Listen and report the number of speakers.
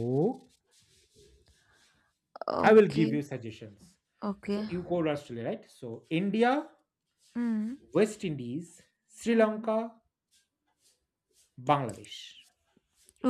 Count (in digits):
2